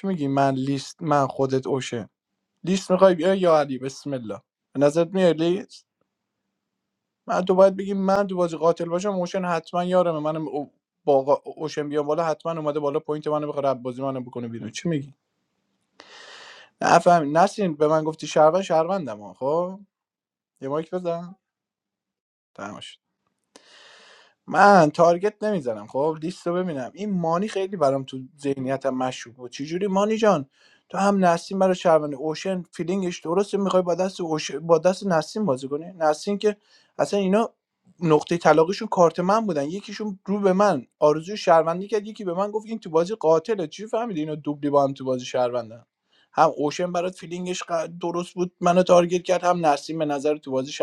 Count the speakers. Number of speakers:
one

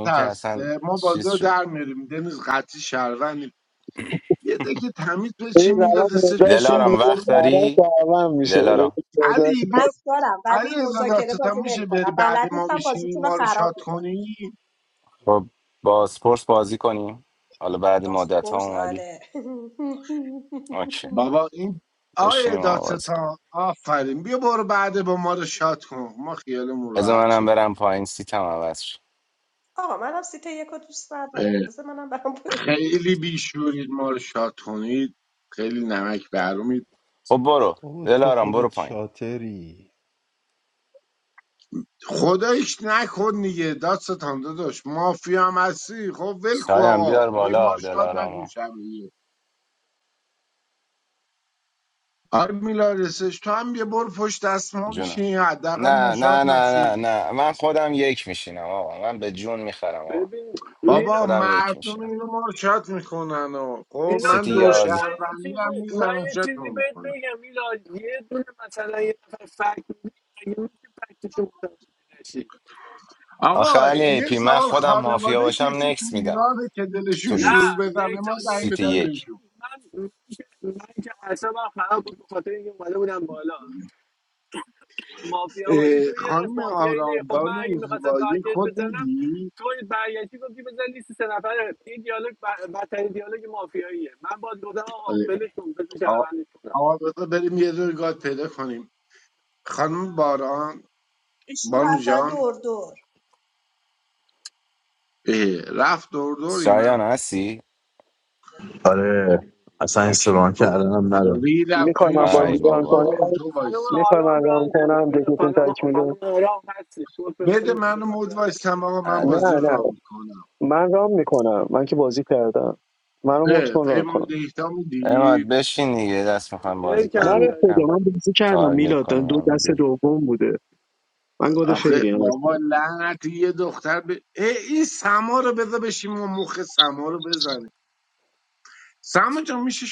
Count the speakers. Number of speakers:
seven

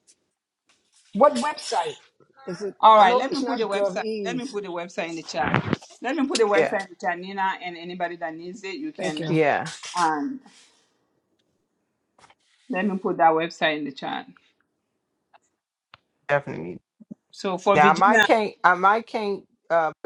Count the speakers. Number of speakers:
three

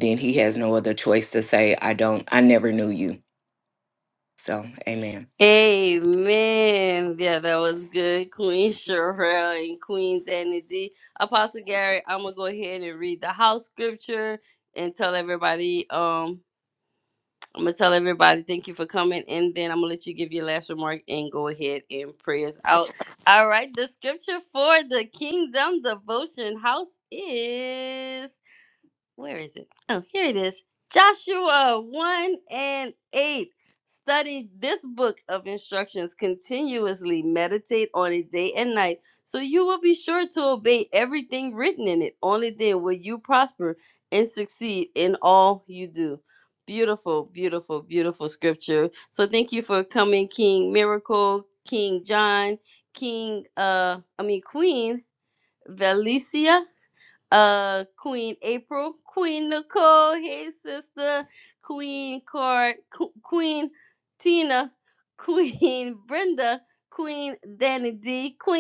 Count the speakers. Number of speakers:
two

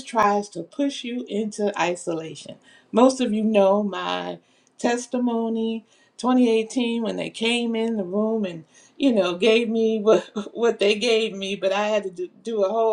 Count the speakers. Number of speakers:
one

